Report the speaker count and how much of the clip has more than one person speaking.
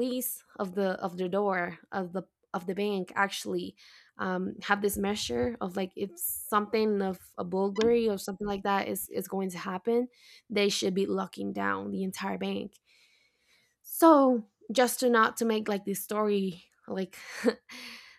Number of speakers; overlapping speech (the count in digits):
1, no overlap